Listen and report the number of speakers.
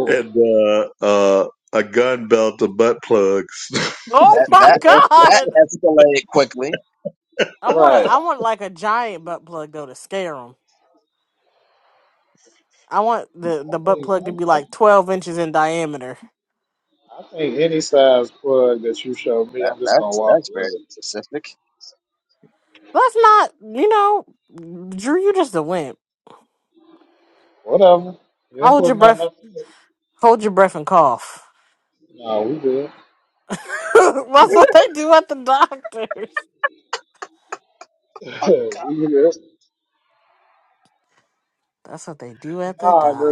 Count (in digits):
4